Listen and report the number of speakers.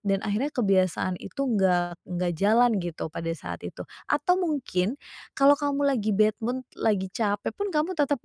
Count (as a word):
one